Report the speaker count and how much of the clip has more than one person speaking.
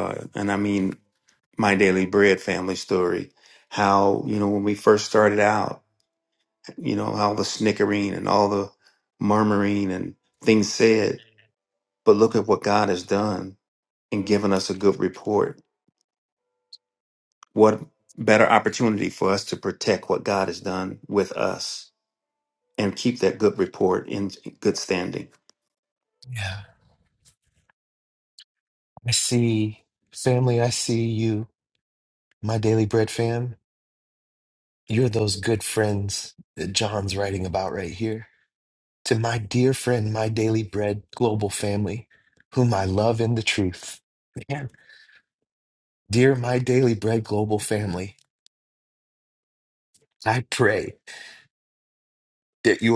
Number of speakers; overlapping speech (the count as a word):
two, no overlap